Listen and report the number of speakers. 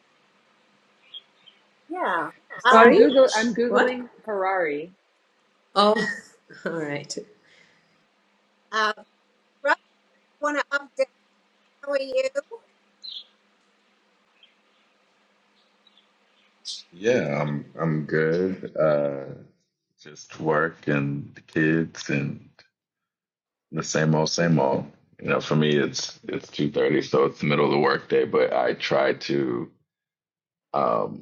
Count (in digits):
4